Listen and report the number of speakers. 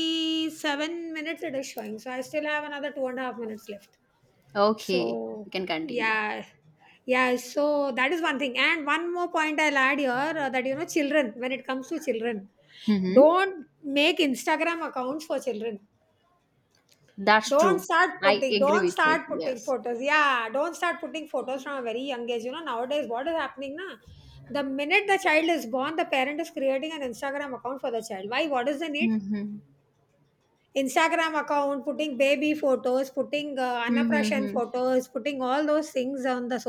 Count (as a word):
two